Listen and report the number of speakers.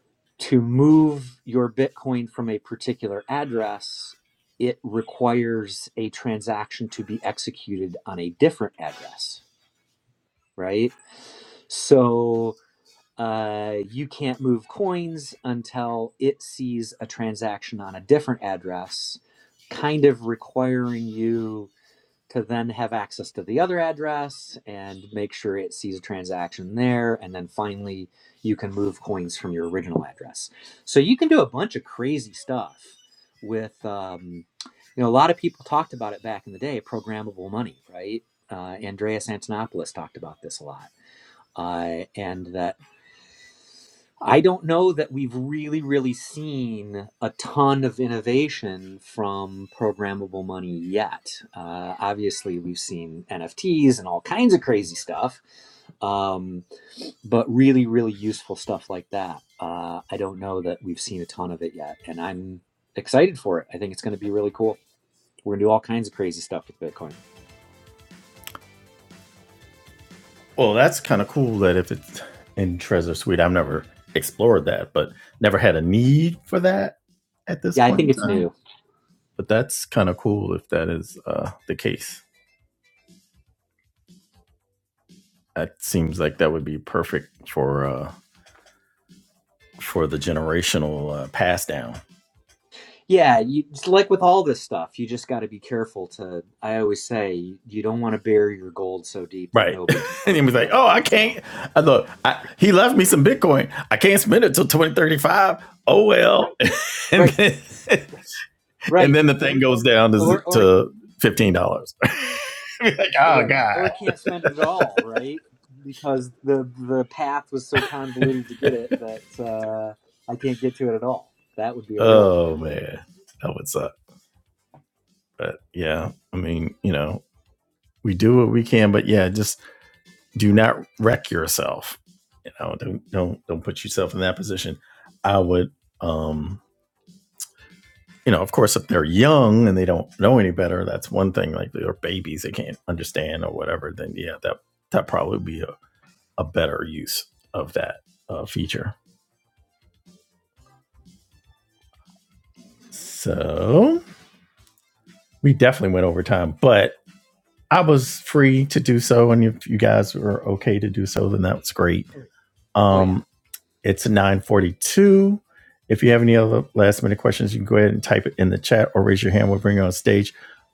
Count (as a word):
two